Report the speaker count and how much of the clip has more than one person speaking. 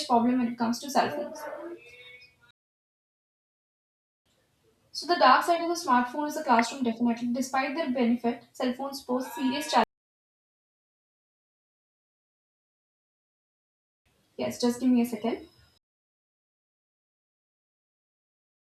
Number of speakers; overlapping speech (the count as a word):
one, no overlap